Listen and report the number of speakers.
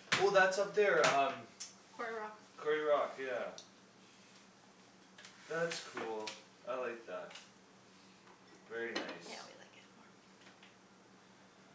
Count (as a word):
two